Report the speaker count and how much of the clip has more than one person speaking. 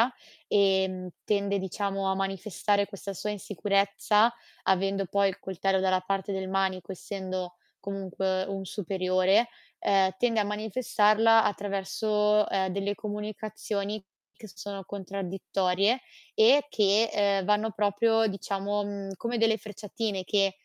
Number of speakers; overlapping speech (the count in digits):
1, no overlap